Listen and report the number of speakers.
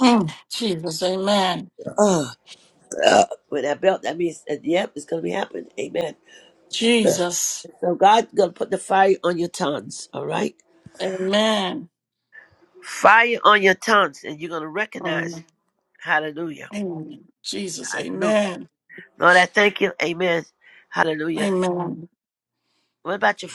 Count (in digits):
2